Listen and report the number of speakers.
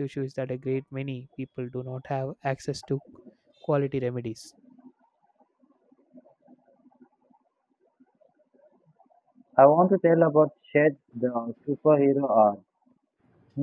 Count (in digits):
2